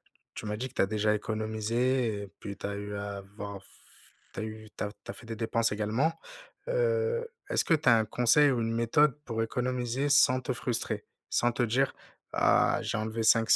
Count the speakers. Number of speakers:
1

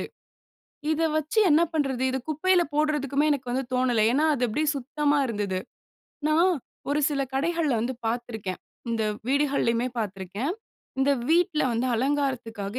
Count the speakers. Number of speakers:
1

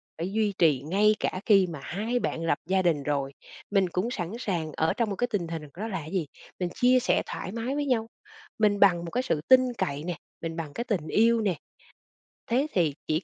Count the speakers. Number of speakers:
1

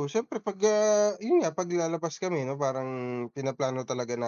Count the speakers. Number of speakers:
1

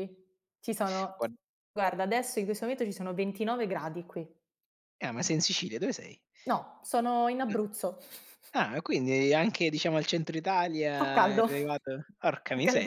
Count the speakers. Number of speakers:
2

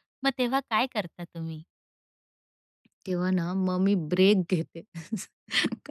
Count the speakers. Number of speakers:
2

